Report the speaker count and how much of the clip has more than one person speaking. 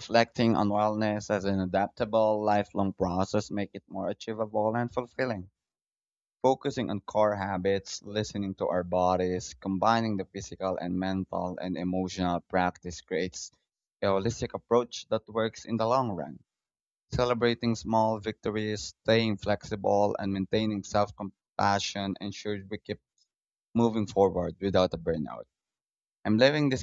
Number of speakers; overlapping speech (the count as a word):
one, no overlap